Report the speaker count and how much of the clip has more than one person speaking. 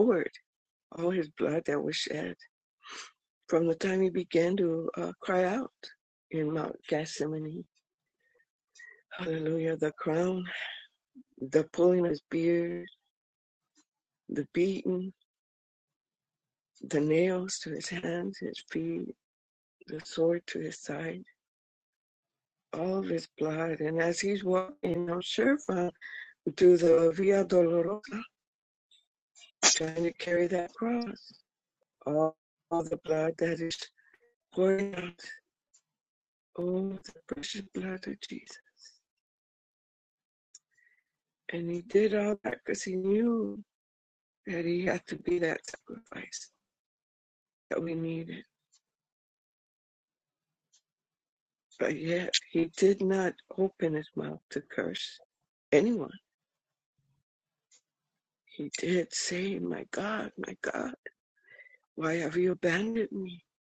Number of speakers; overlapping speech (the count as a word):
one, no overlap